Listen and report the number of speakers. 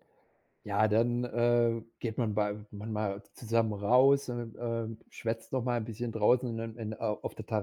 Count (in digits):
1